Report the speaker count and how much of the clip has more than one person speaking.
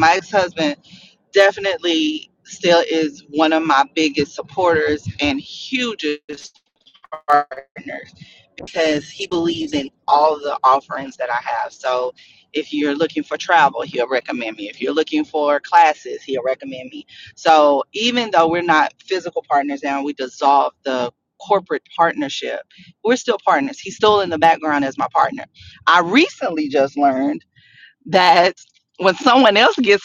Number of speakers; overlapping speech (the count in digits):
1, no overlap